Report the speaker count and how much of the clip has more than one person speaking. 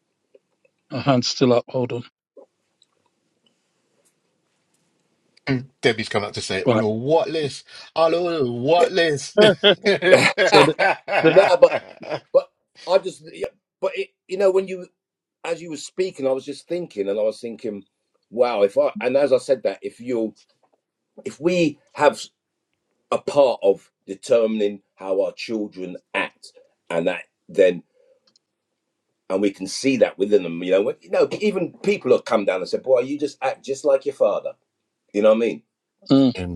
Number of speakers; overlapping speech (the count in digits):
3, about 1%